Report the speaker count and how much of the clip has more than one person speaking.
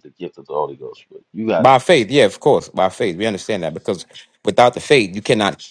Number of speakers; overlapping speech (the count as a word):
two, about 2%